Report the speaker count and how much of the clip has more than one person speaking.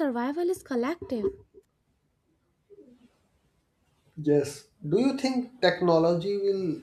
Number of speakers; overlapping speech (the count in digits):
2, no overlap